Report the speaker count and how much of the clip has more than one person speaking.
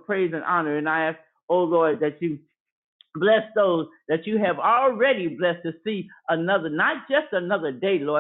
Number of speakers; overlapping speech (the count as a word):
one, no overlap